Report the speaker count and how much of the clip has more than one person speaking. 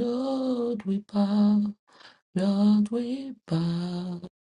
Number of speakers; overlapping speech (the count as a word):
one, no overlap